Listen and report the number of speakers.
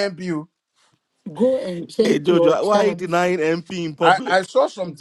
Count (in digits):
3